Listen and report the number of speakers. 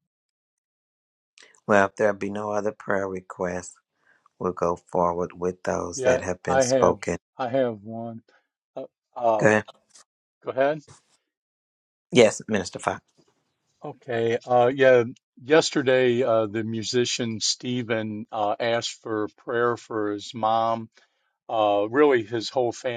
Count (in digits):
2